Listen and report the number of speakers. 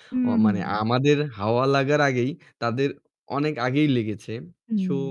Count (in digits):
2